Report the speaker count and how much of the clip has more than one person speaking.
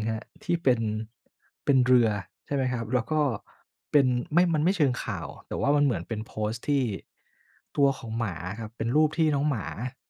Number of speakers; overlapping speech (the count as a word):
one, no overlap